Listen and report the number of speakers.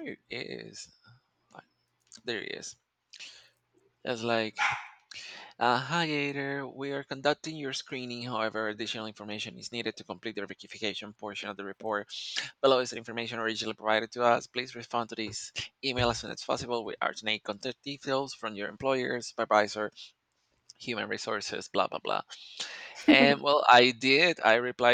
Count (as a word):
one